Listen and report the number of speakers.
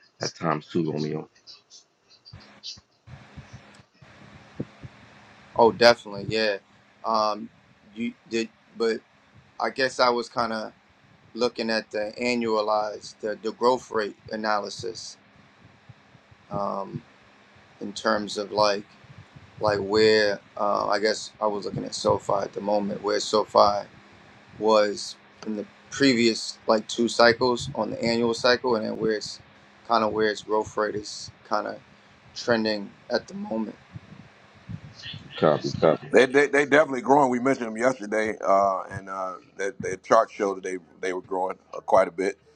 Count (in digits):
3